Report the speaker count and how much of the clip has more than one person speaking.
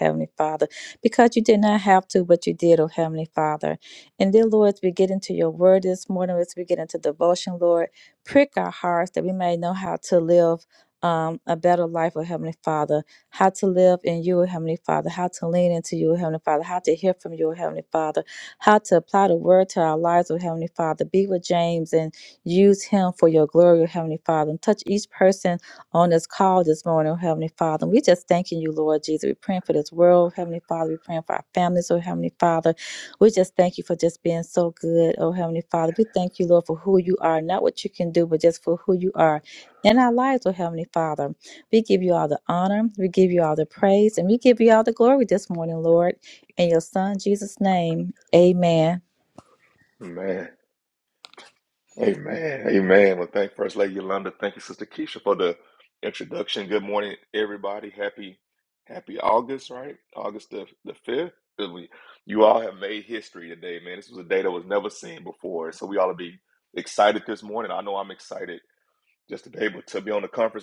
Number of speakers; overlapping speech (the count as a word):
two, no overlap